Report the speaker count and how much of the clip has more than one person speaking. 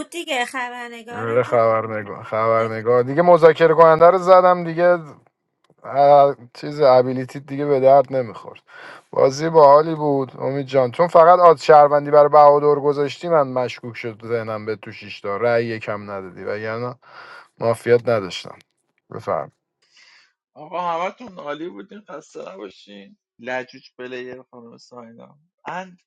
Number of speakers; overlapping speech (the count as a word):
three, about 2%